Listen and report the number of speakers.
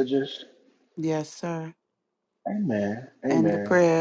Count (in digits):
2